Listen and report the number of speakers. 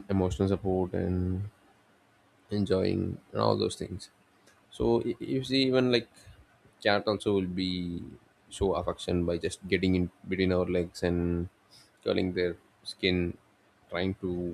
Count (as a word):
one